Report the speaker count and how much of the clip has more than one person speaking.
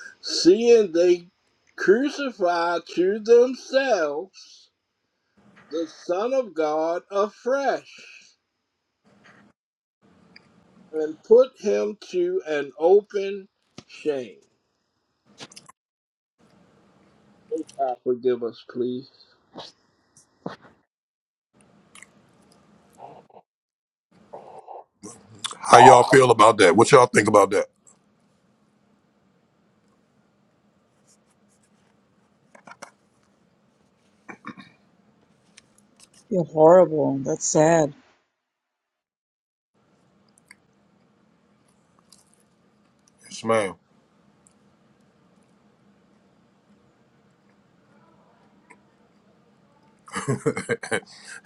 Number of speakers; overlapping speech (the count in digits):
3, no overlap